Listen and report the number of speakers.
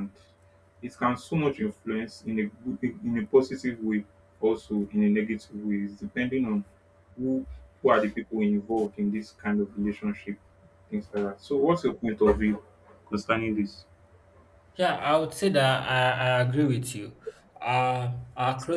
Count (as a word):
two